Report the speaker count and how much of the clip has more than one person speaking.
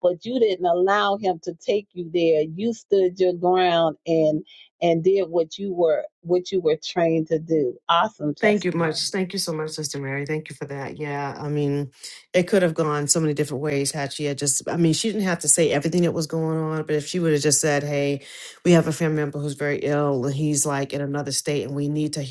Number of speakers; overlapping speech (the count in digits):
2, about 2%